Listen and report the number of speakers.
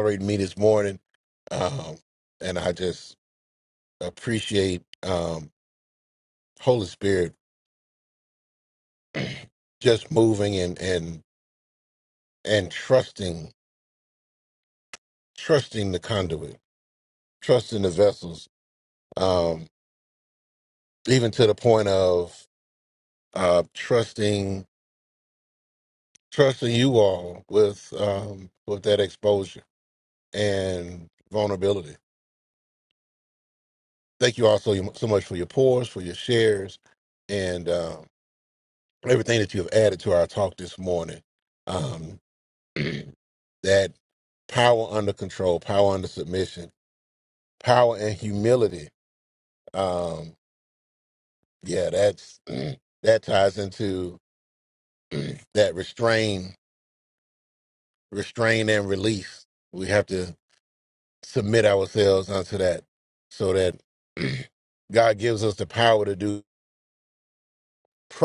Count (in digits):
1